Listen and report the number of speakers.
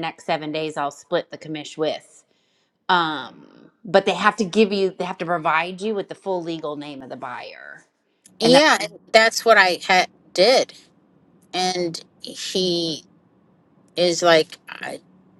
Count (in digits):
2